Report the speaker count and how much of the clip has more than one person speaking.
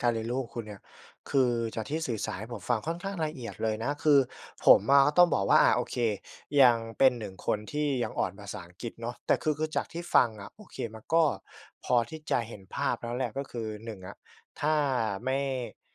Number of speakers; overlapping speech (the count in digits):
1, no overlap